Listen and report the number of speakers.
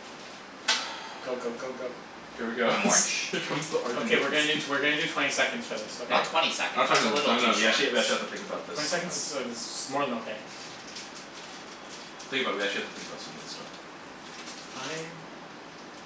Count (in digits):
3